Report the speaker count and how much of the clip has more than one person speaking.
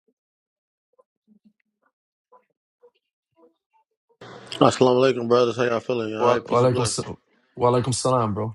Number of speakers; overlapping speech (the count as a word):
two, about 11%